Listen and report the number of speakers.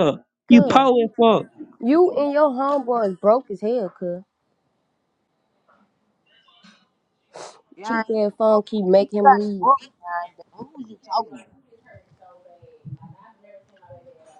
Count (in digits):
3